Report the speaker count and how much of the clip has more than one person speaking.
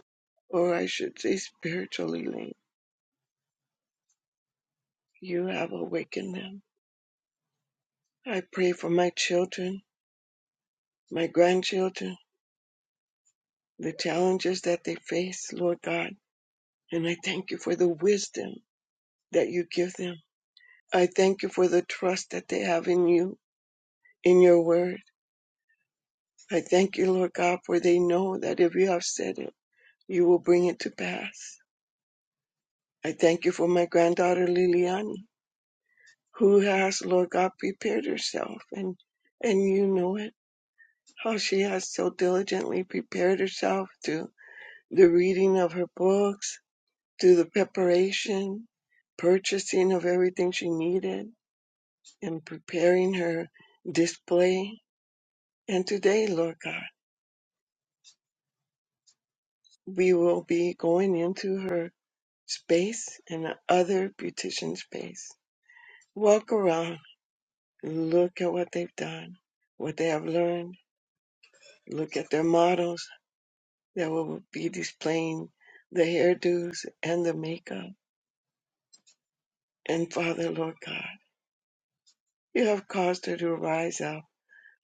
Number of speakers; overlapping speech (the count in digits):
1, no overlap